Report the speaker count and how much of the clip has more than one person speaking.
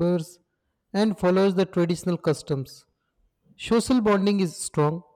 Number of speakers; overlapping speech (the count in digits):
1, no overlap